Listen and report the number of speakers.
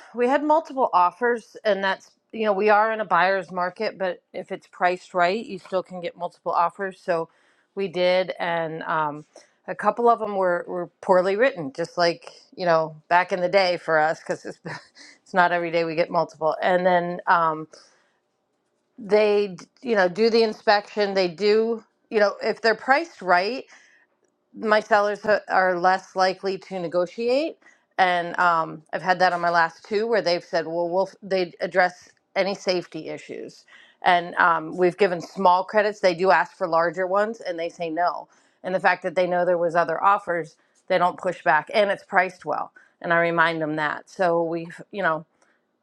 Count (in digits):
1